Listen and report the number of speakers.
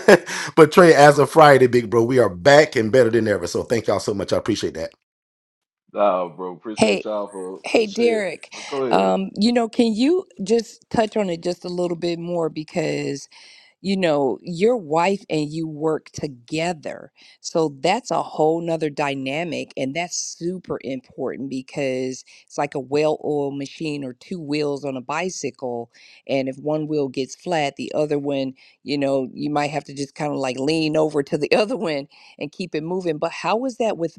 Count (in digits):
3